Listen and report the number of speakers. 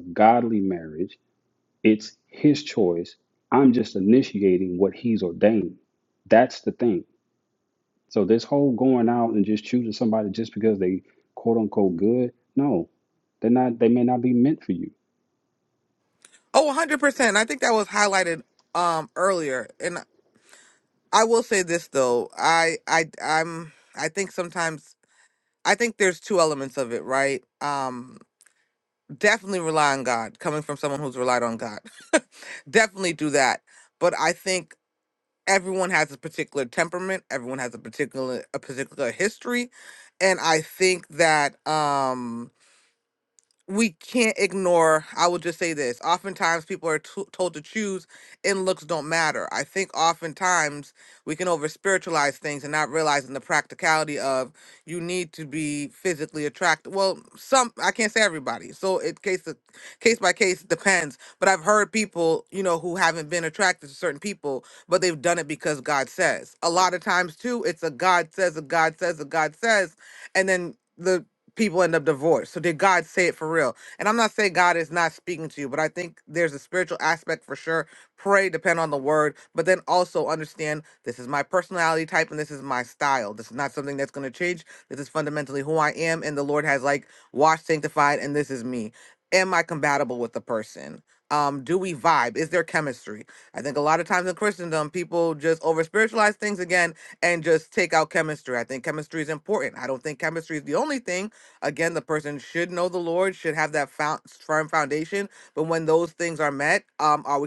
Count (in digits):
2